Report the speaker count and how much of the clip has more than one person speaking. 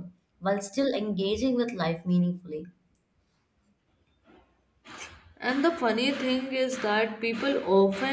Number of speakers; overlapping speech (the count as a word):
two, no overlap